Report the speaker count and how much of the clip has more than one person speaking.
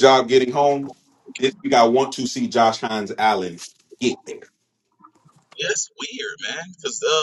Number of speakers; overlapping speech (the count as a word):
two, no overlap